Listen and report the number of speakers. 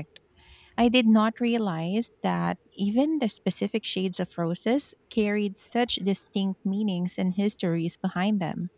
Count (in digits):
1